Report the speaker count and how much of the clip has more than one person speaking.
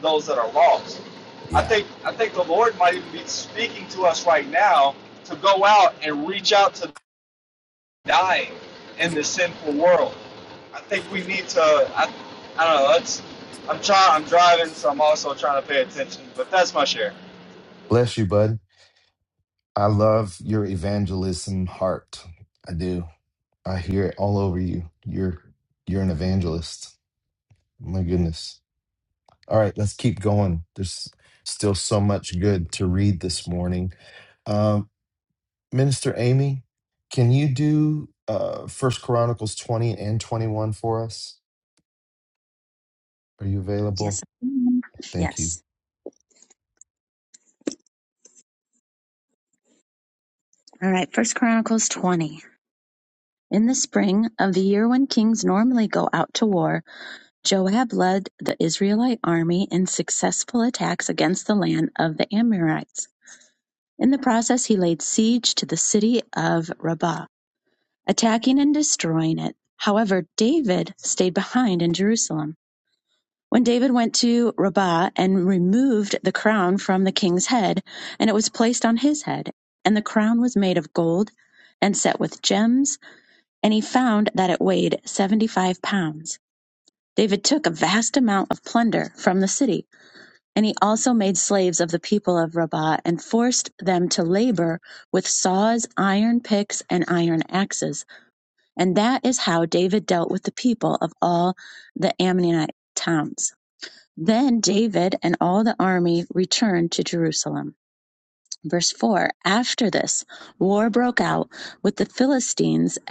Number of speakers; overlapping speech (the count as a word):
three, about 1%